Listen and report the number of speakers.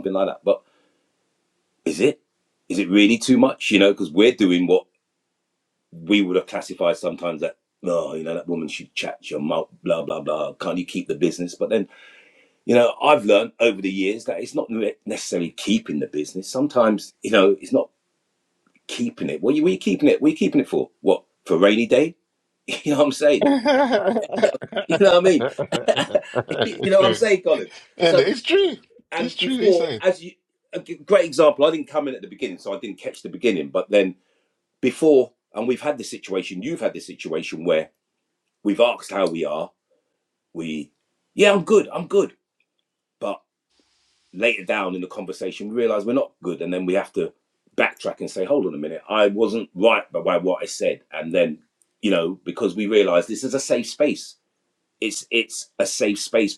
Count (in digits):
2